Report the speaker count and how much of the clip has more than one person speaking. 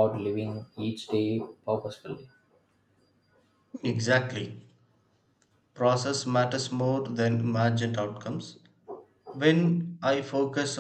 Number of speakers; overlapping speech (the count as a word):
two, no overlap